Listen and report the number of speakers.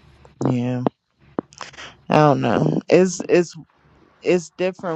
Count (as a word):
one